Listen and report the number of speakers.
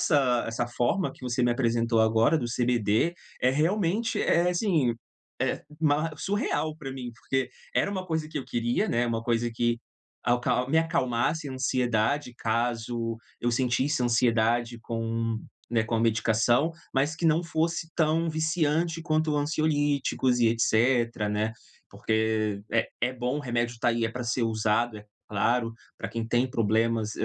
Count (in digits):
1